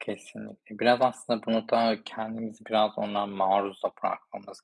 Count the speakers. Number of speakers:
1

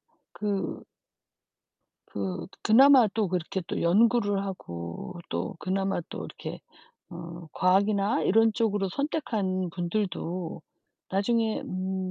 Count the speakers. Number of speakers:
1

